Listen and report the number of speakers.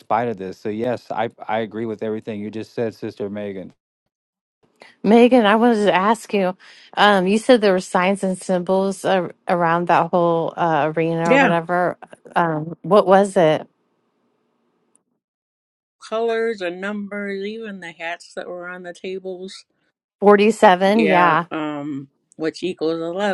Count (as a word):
three